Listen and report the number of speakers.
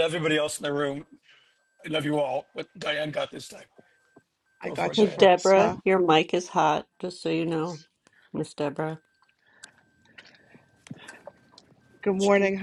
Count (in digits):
3